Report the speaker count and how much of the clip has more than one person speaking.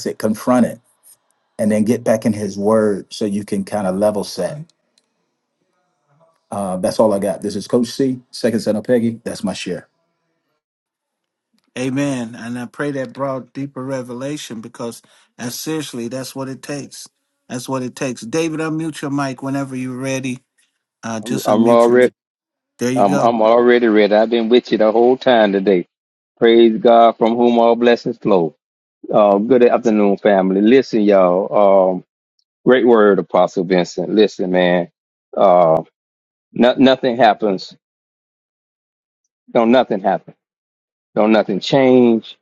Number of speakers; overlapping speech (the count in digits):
3, about 3%